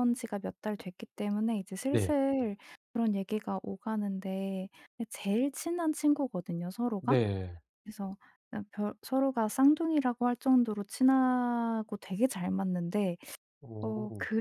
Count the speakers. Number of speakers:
two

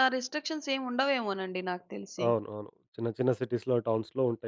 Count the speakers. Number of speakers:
two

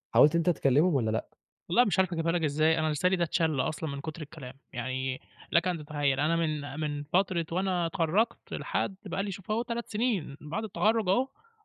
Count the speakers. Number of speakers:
two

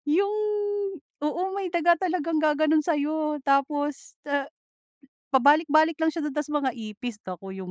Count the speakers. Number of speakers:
one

